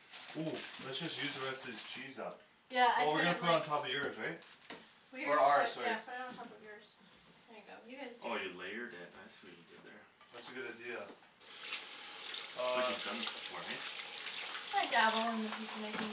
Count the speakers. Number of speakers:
3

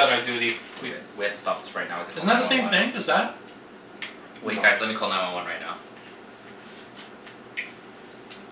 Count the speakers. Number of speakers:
3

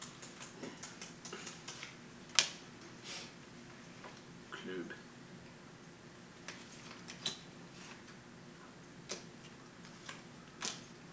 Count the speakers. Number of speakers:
0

